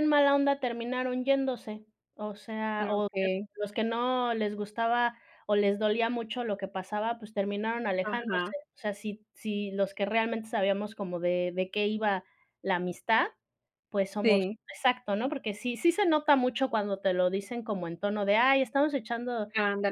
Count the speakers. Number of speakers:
two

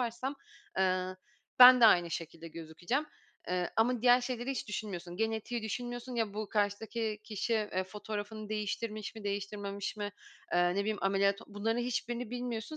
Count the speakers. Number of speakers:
one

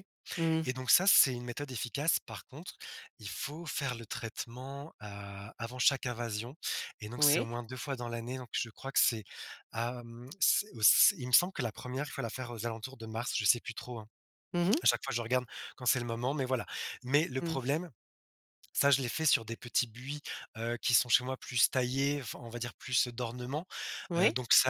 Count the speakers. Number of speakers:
two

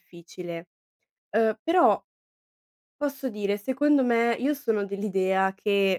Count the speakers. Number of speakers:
one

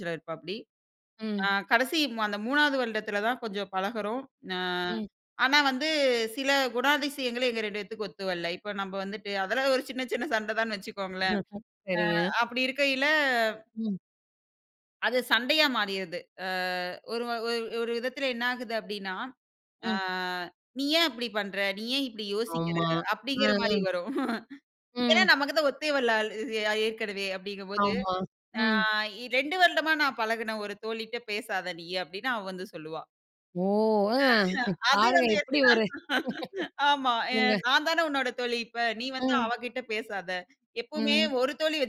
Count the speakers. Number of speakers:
two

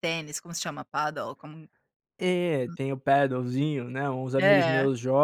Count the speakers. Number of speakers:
two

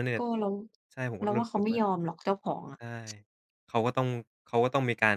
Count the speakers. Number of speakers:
two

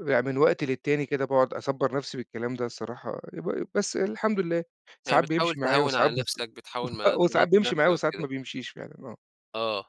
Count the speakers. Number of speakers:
two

